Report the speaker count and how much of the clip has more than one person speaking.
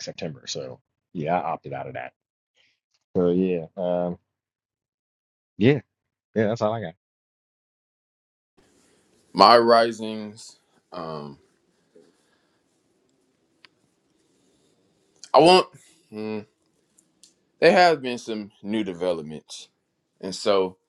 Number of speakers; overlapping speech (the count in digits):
2, no overlap